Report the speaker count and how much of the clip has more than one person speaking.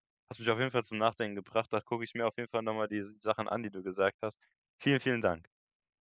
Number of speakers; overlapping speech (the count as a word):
one, no overlap